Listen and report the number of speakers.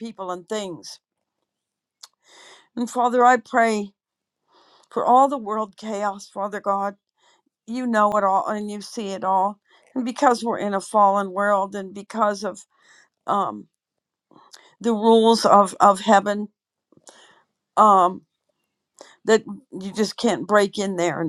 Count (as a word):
one